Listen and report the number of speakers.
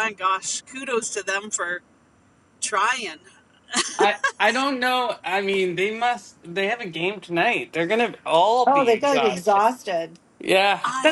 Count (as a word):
three